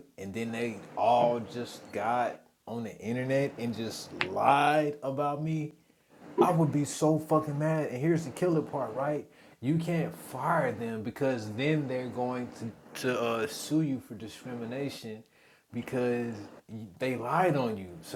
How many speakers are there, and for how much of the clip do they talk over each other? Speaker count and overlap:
one, no overlap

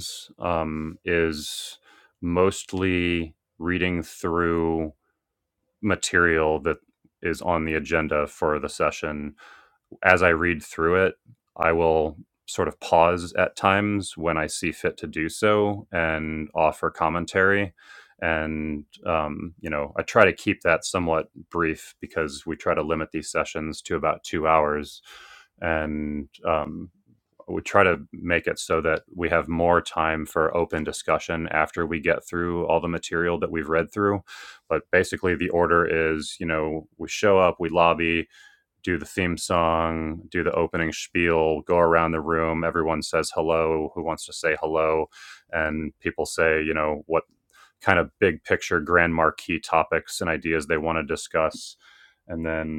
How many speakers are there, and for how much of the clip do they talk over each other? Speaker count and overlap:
one, no overlap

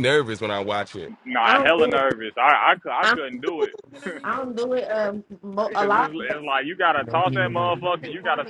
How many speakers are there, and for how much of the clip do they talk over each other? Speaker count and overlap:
three, about 29%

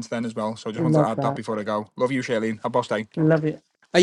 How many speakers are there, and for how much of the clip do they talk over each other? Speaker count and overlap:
two, about 16%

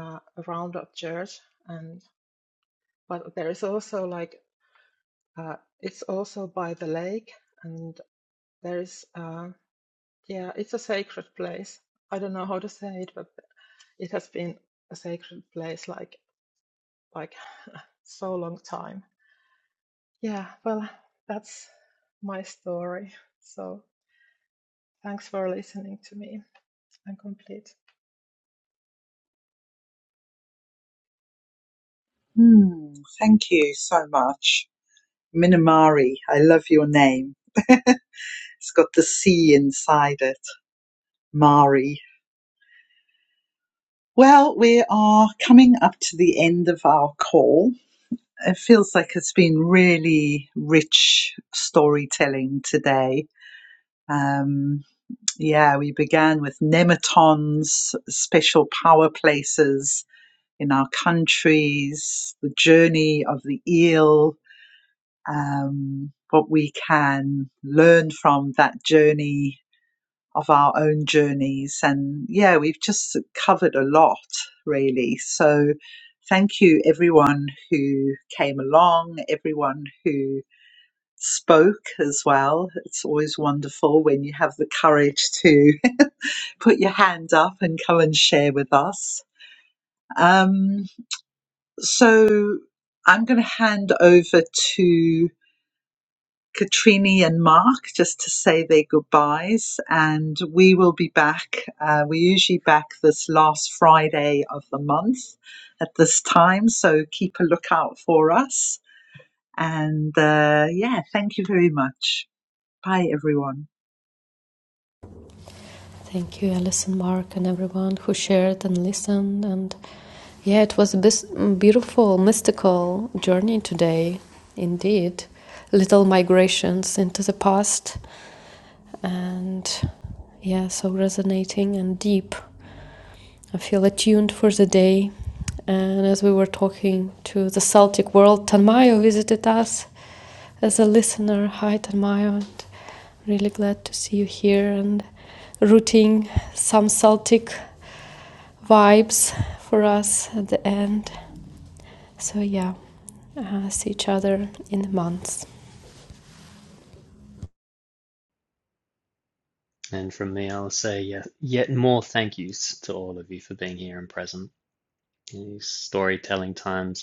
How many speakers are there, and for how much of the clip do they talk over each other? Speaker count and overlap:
four, no overlap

